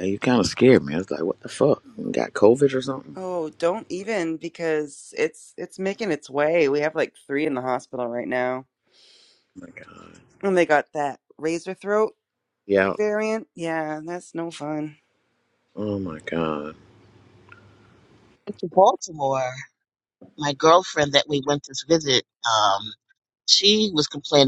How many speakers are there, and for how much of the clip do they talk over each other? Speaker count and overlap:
three, no overlap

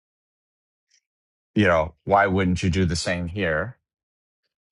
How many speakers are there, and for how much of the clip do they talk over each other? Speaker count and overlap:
one, no overlap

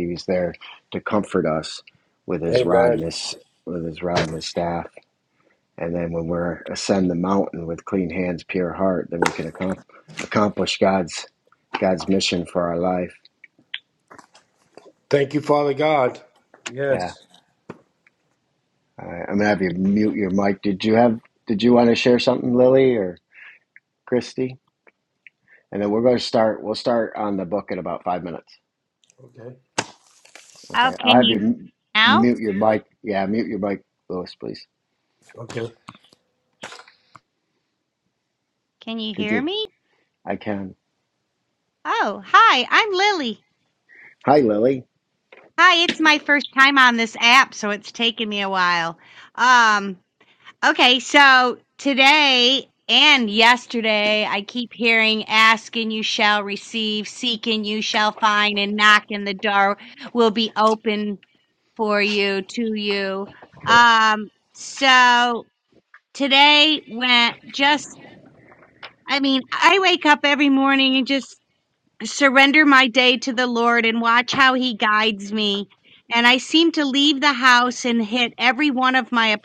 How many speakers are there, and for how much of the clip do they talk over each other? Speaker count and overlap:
three, about 2%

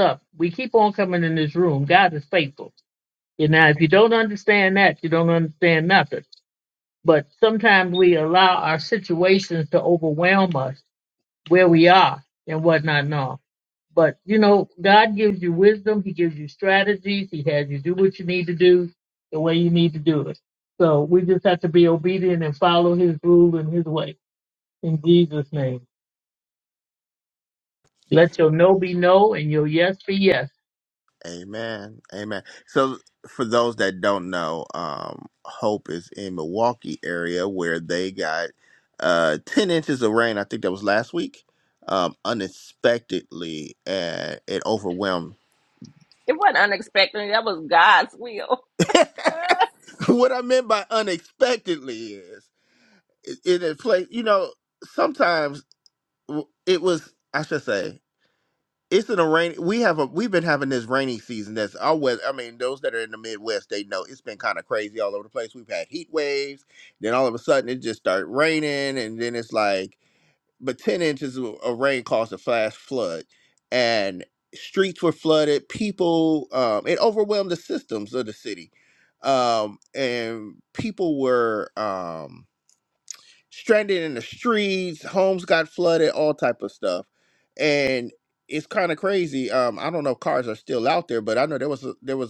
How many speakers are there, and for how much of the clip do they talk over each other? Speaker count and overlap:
three, no overlap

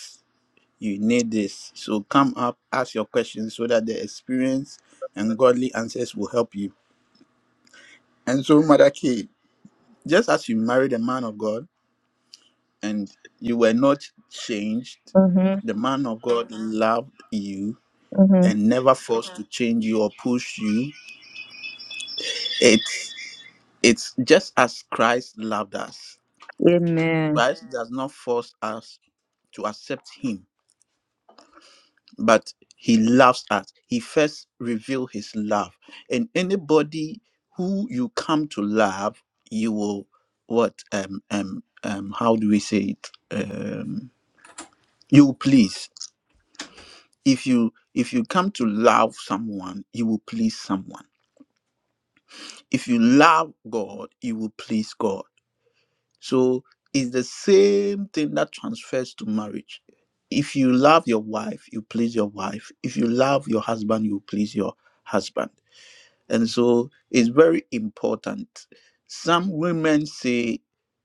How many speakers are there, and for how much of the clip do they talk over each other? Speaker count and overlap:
two, under 1%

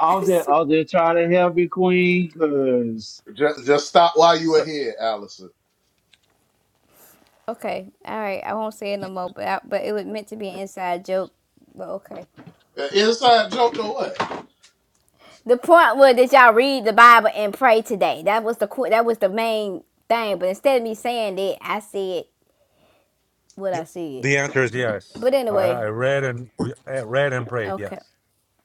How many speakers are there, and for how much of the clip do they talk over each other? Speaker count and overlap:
four, about 3%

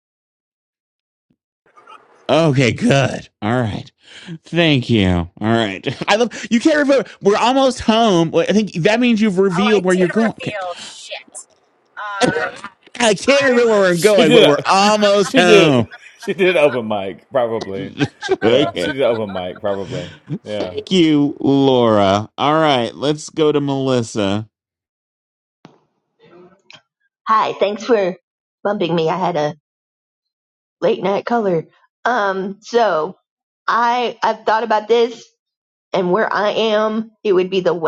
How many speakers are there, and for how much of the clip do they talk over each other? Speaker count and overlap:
four, about 9%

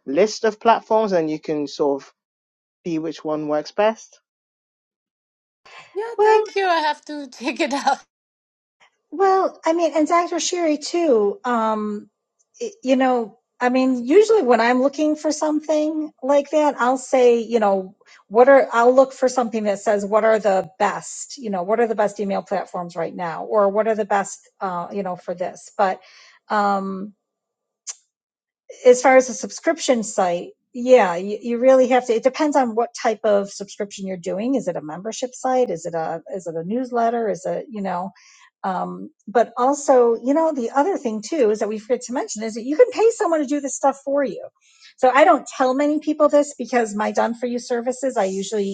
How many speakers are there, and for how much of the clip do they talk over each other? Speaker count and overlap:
three, about 1%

